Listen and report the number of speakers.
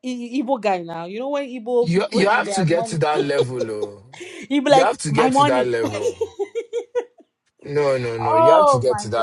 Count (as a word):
two